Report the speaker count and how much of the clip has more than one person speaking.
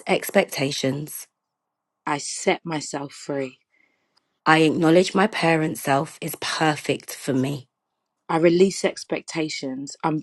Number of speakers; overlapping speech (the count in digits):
2, no overlap